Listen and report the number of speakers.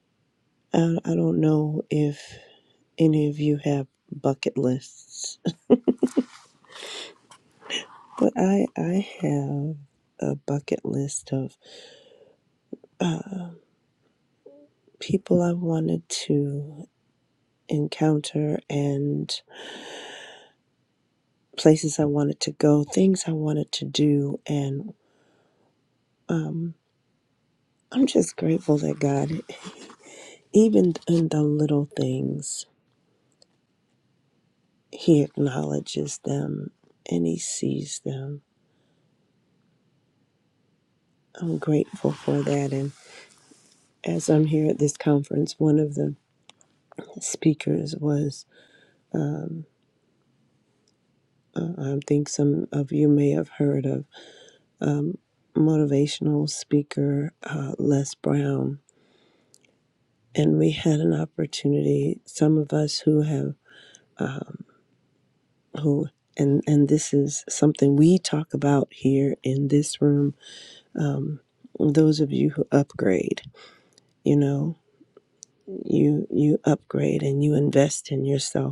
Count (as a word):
one